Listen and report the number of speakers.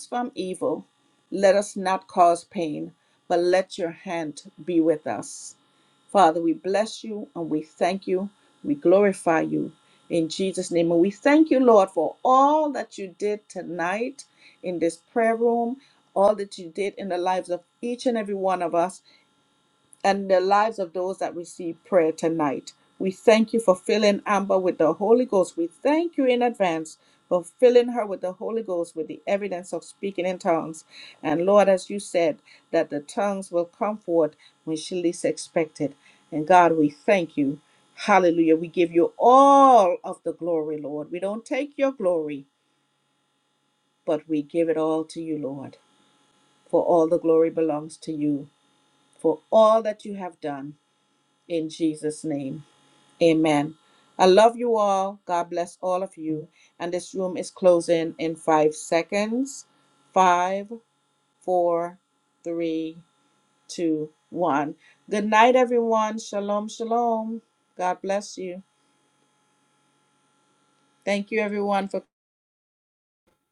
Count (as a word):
one